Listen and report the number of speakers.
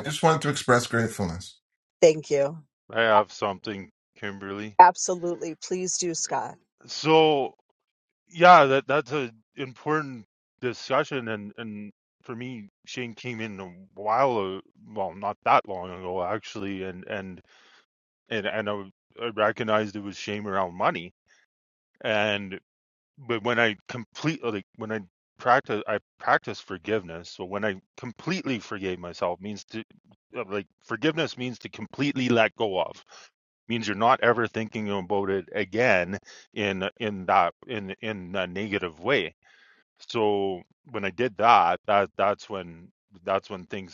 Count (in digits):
3